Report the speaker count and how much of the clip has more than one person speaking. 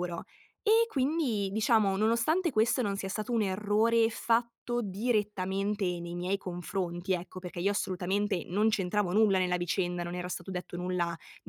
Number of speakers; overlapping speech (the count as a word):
one, no overlap